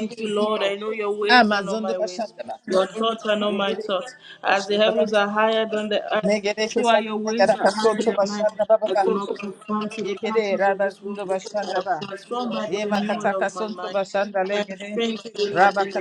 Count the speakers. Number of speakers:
2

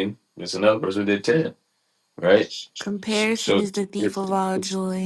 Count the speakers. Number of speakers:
2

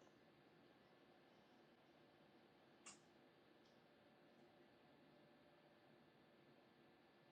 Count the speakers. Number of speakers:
0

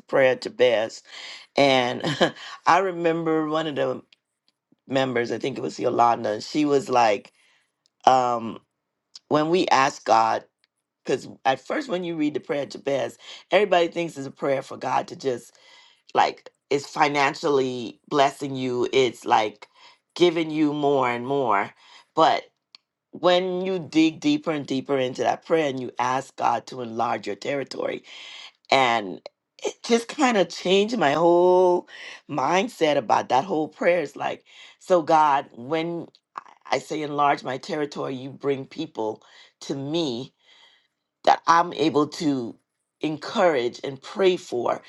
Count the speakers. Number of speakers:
1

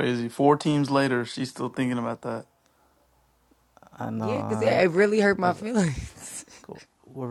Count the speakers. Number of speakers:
3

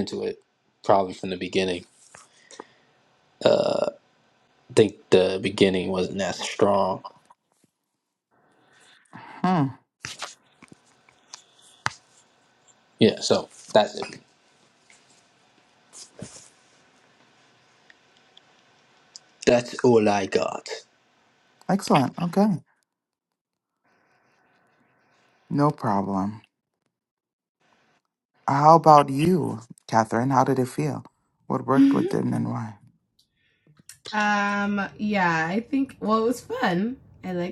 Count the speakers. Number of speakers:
3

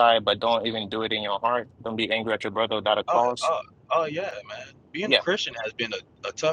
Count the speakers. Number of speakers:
2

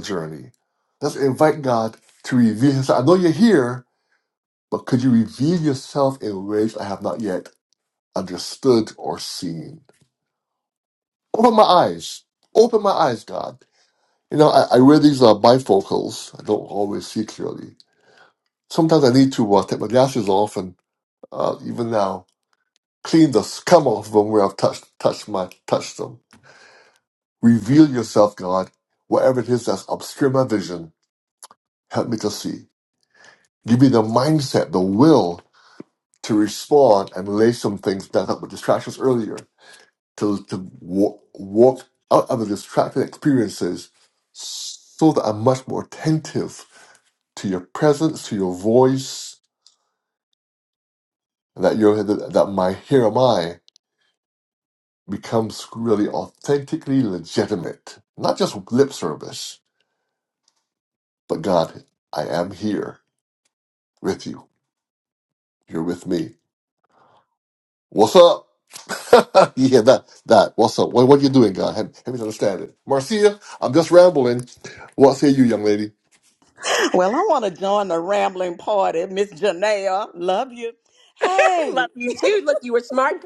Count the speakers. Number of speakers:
3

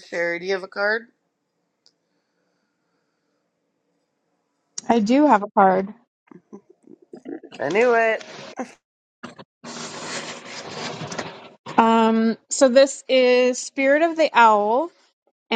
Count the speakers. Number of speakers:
2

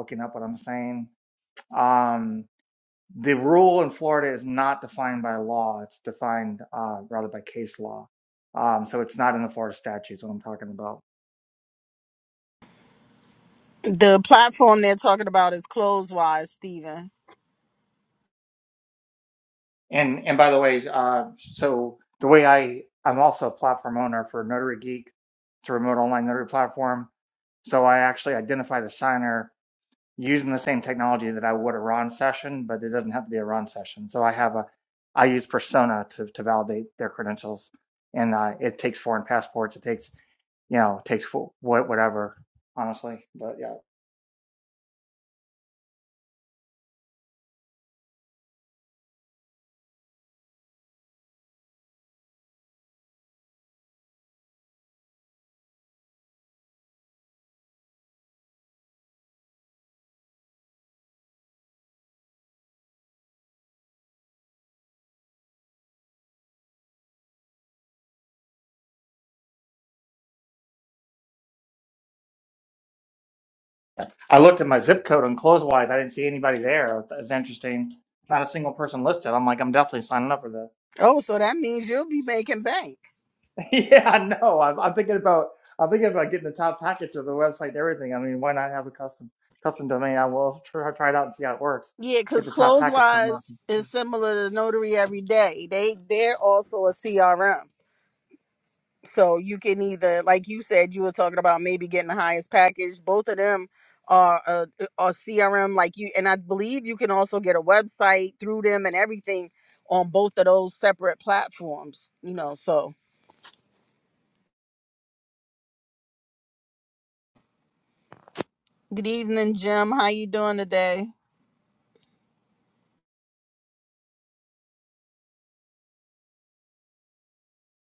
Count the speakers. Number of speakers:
2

